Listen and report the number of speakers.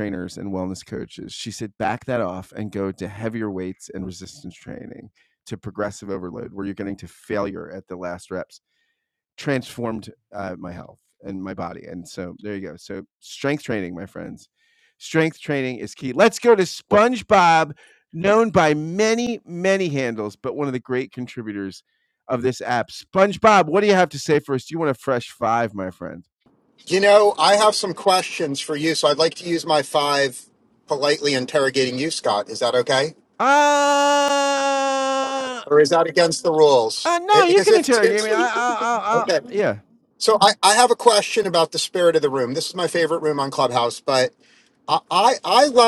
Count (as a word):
two